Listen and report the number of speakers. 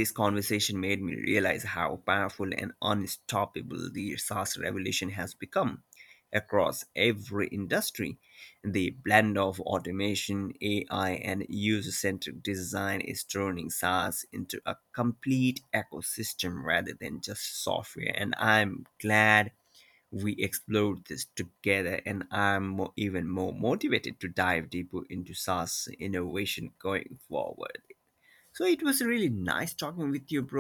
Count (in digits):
1